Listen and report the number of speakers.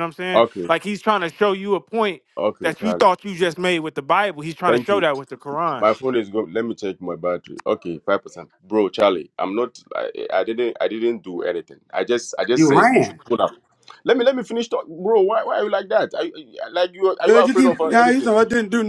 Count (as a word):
three